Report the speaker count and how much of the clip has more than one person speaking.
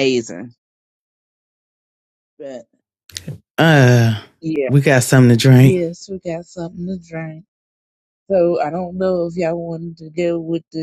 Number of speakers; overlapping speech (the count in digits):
2, about 1%